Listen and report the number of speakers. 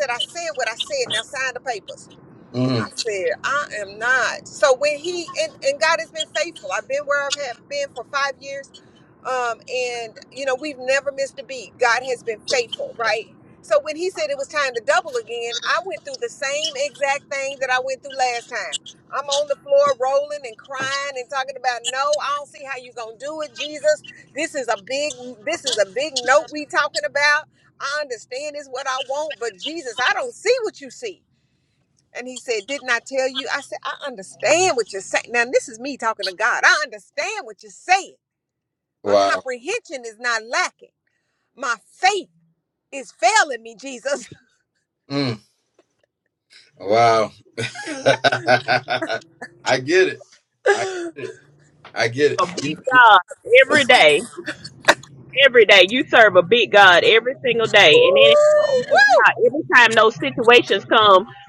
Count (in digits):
3